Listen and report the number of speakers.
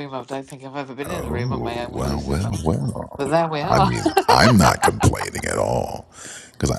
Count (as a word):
two